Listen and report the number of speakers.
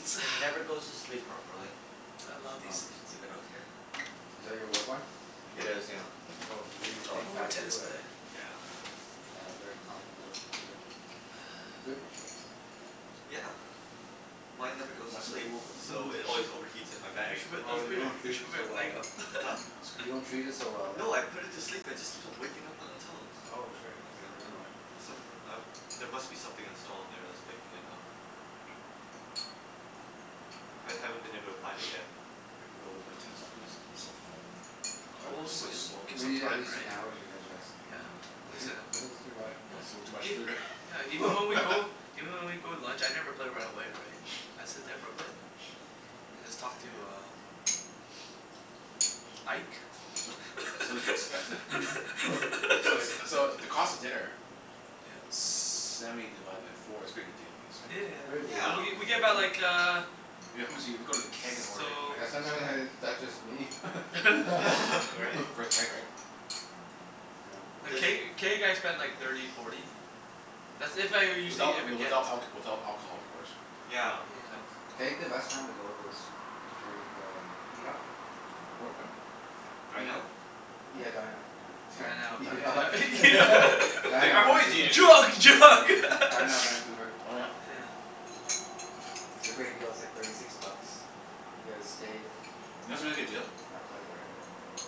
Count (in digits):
4